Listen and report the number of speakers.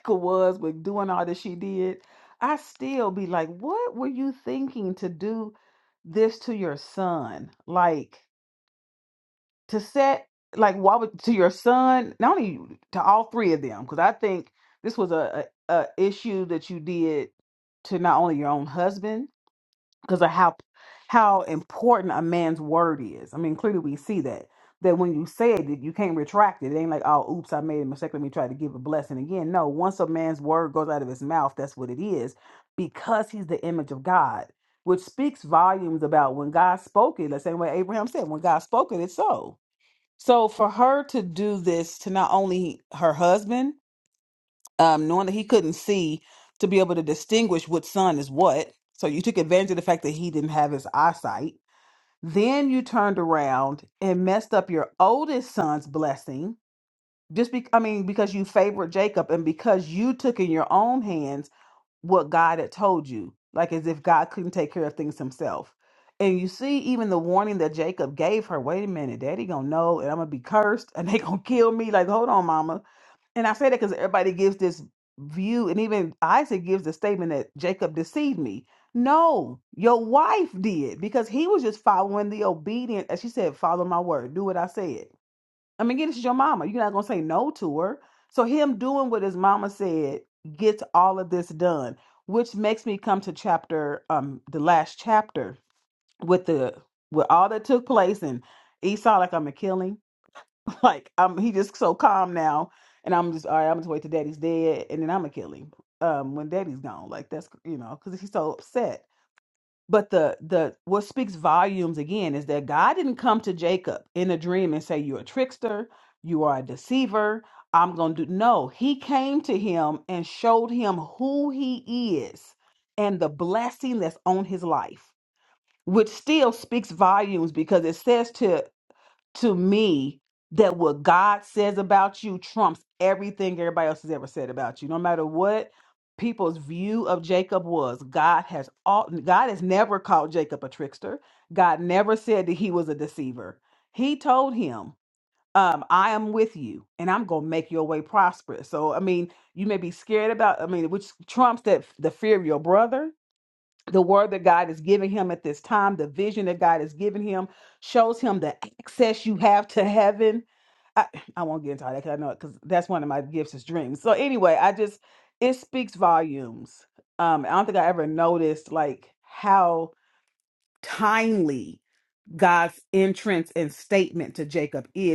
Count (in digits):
1